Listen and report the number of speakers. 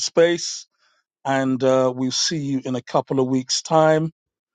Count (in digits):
1